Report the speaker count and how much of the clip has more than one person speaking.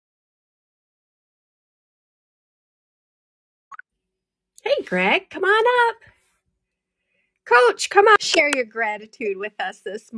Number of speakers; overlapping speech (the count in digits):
1, no overlap